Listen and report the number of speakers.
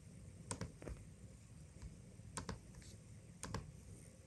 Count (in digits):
0